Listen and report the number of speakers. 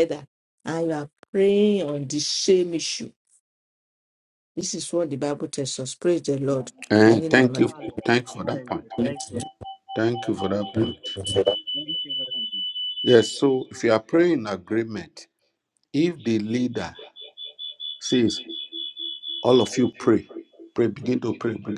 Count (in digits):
3